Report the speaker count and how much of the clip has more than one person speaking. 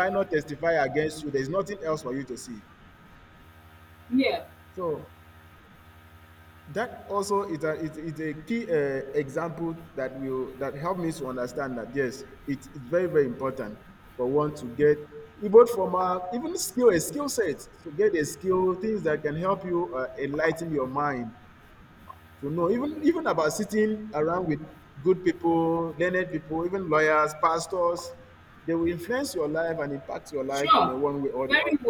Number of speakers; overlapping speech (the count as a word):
two, about 2%